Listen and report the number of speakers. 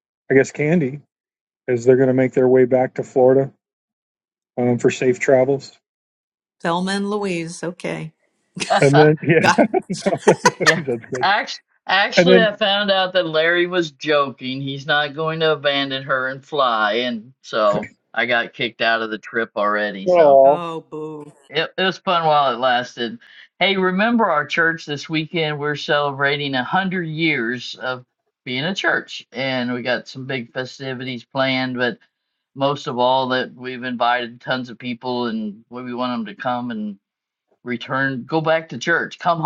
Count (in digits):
3